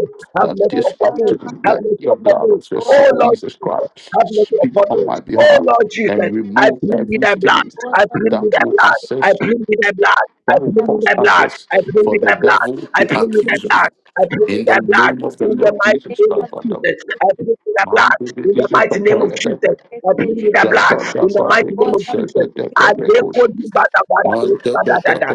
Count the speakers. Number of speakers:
2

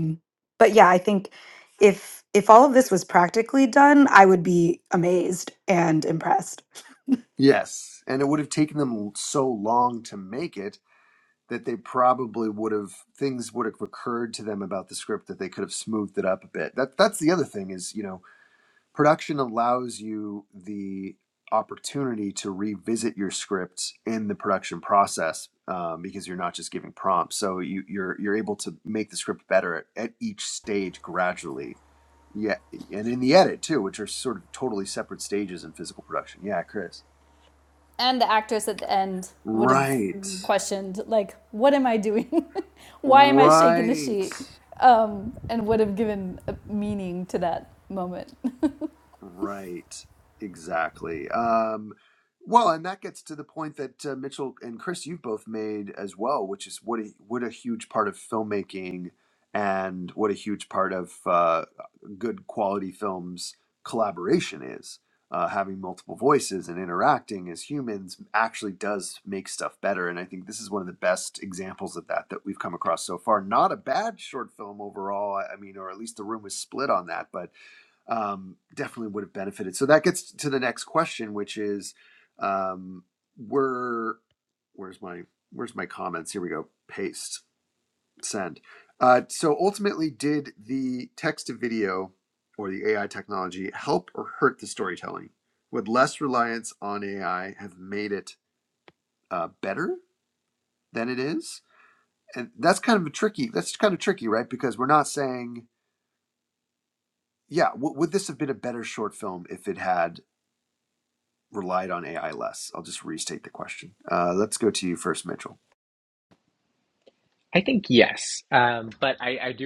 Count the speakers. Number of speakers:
4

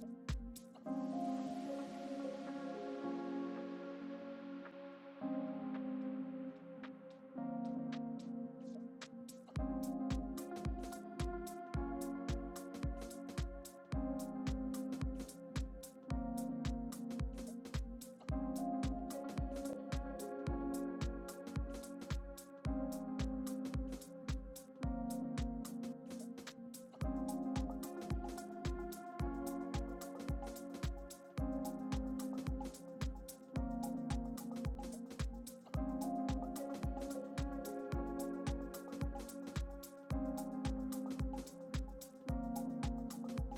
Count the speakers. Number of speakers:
0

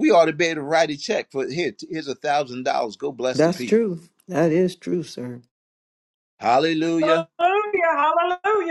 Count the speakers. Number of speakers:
3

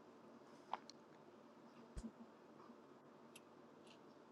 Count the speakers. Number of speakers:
0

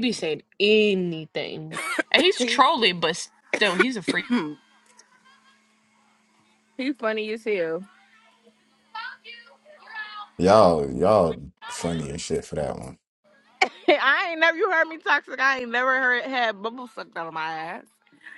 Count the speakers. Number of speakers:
3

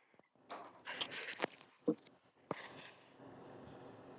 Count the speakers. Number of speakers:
0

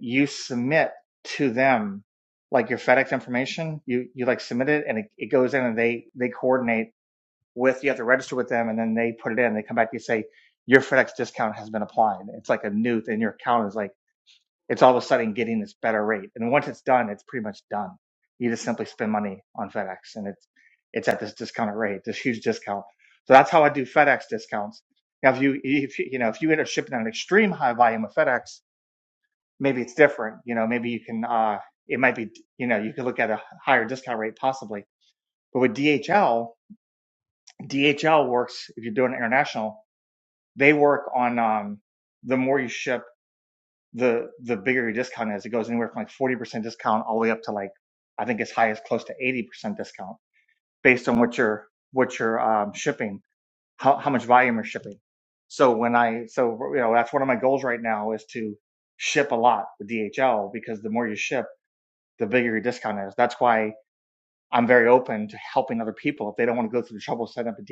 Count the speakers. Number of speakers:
1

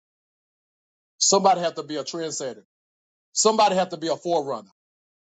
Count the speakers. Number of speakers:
1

